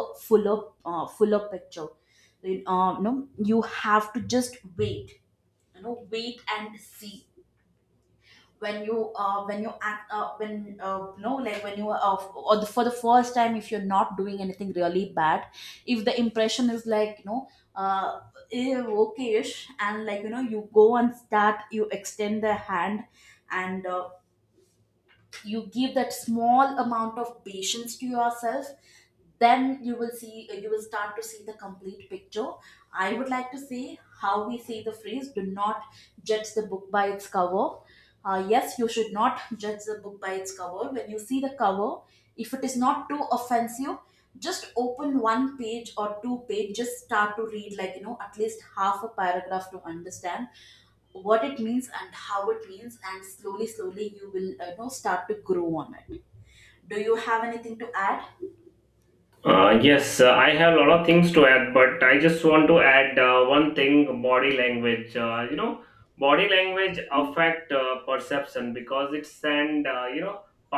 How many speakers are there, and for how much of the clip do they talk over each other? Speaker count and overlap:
2, no overlap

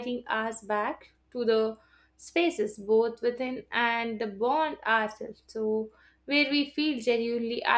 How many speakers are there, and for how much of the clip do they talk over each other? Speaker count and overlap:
1, no overlap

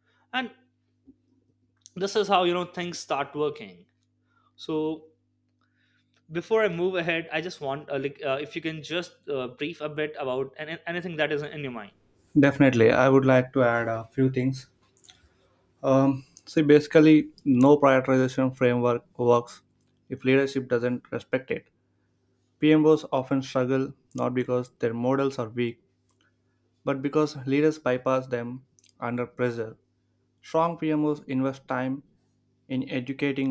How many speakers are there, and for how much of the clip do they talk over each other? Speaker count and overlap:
2, no overlap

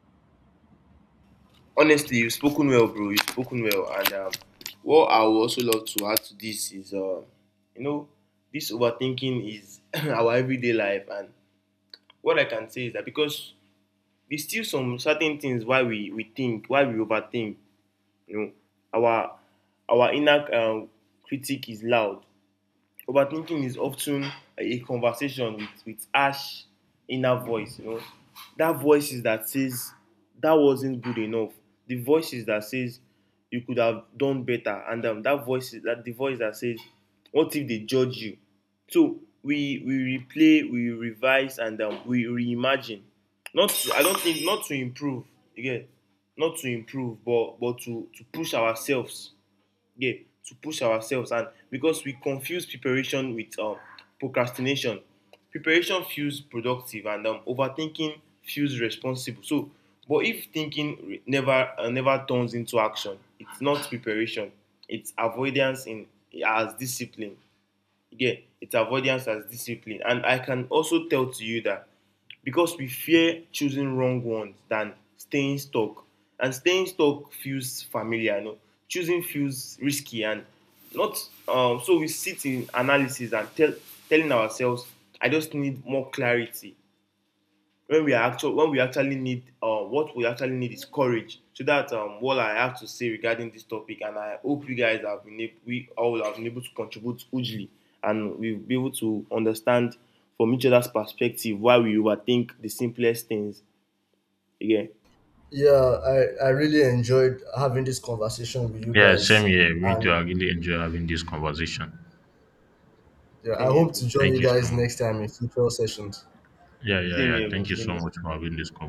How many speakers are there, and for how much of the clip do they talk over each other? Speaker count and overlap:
3, about 2%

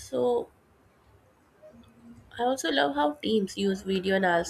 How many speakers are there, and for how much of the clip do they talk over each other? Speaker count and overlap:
1, no overlap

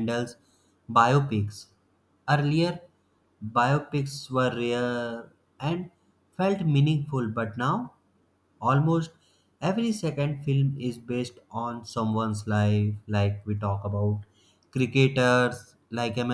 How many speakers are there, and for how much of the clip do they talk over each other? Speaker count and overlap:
1, no overlap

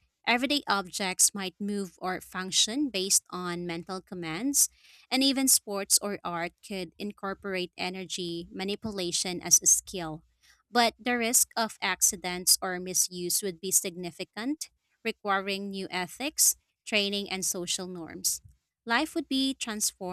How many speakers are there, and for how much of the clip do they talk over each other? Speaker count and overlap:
1, no overlap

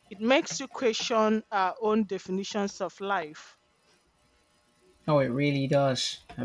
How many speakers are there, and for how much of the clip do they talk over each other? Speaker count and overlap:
2, no overlap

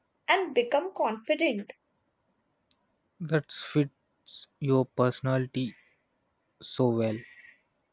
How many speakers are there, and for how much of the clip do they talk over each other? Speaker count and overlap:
2, no overlap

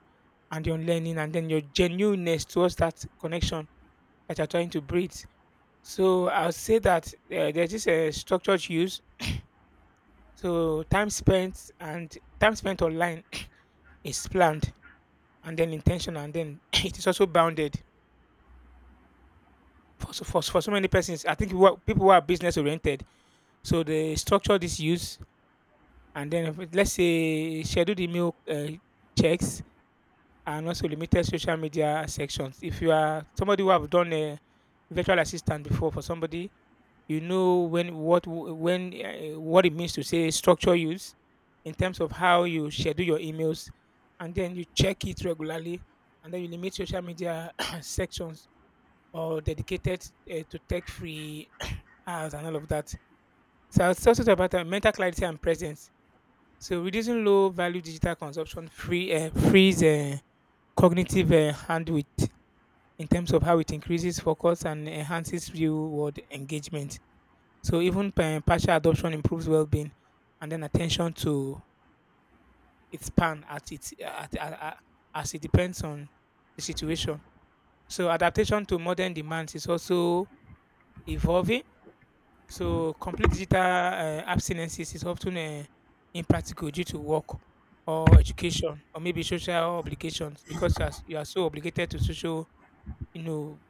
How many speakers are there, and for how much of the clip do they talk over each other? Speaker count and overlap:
1, no overlap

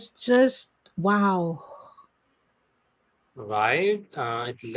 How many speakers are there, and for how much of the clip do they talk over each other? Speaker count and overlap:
2, no overlap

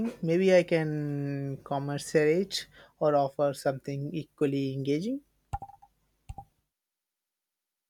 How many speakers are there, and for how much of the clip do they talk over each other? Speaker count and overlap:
1, no overlap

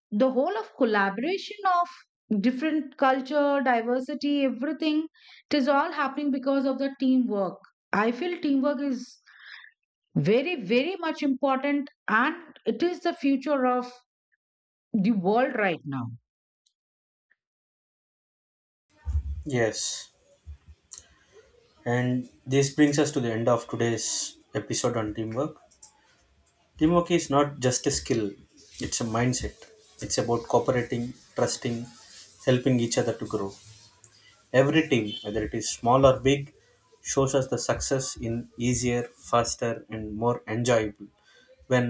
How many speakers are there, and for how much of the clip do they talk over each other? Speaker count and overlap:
2, no overlap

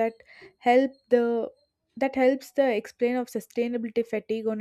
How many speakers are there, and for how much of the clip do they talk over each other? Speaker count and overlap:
1, no overlap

